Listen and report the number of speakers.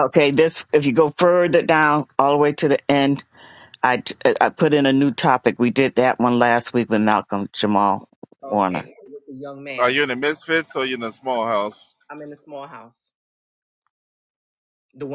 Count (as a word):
three